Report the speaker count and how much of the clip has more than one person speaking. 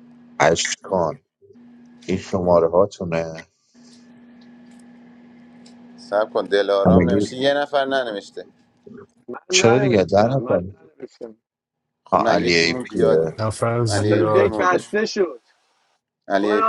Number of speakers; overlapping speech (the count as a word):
four, about 23%